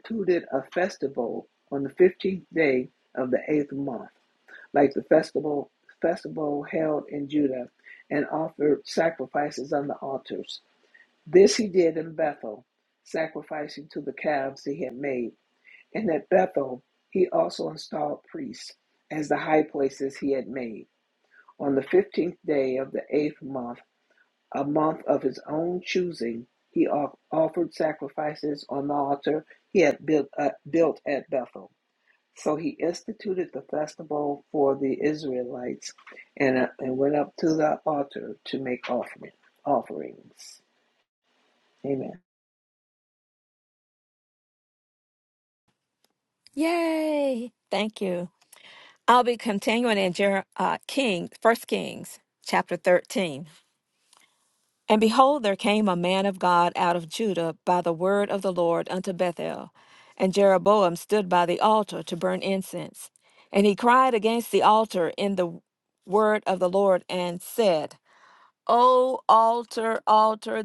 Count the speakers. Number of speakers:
two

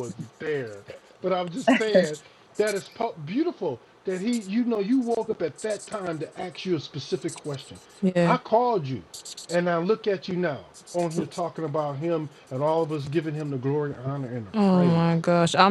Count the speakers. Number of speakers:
two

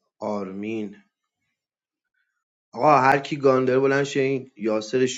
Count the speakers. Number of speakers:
one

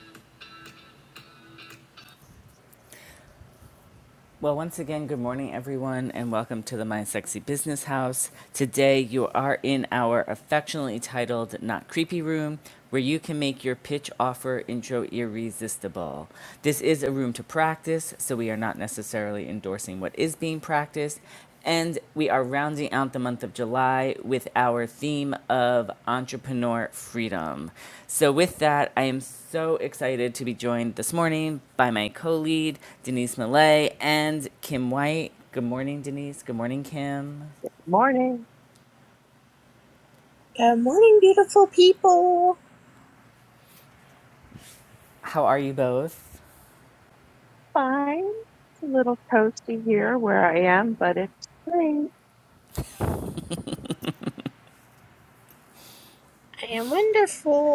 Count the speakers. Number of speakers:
three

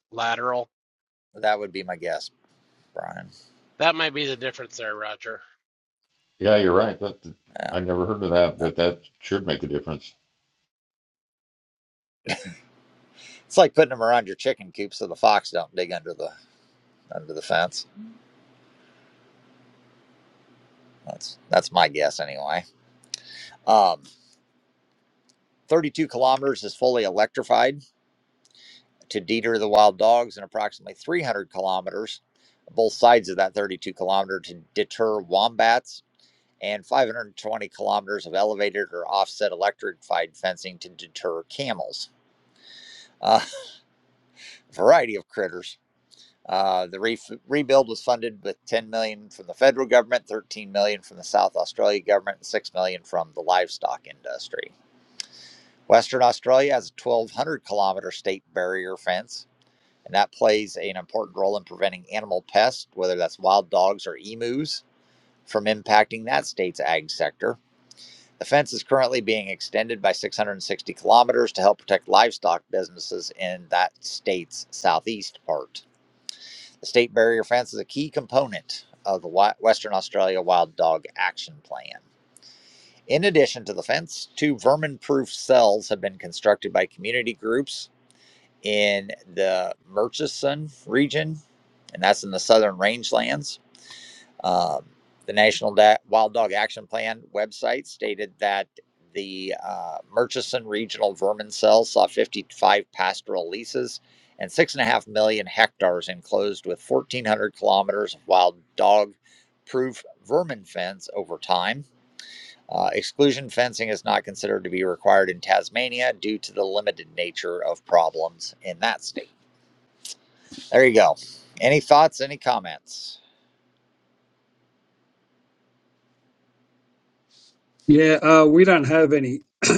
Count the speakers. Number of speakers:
four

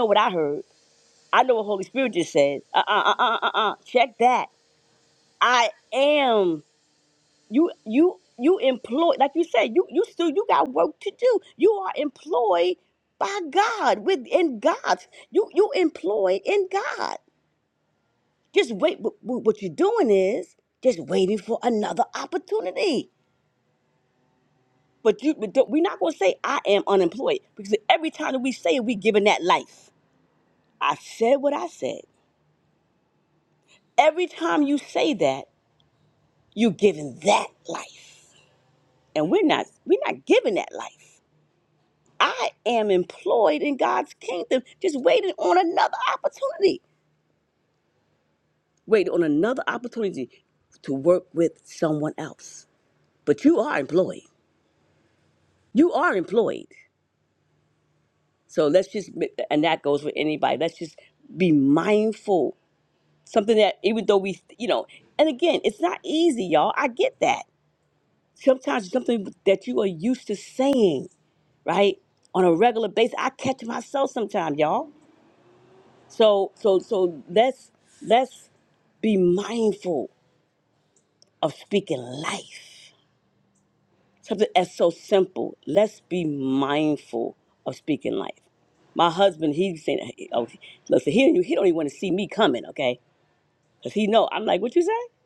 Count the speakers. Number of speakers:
one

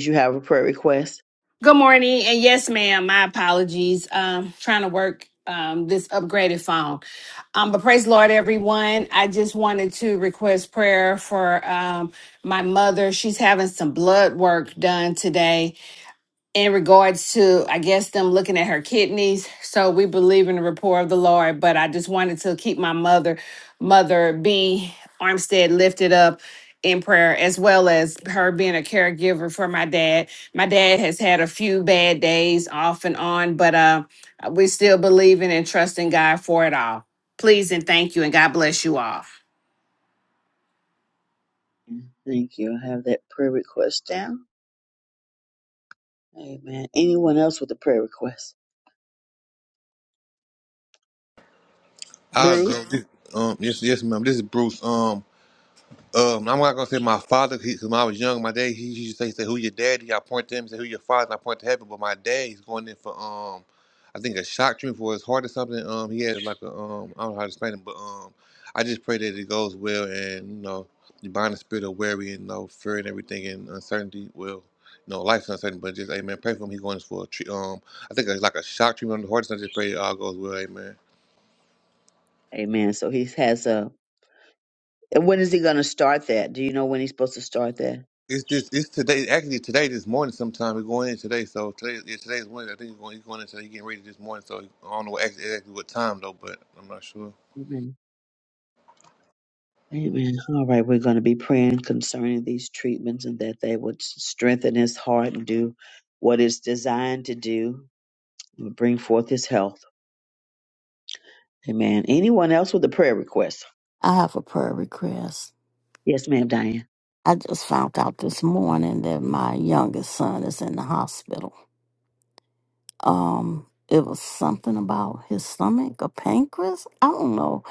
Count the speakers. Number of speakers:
four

